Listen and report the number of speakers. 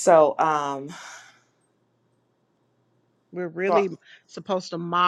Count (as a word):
two